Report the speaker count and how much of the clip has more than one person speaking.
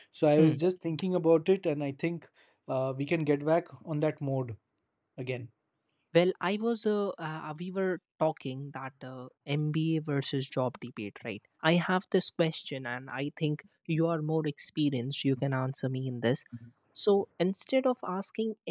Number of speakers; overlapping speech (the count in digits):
2, about 1%